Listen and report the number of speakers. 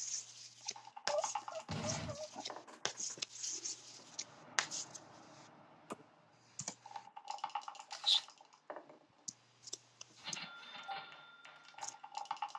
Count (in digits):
0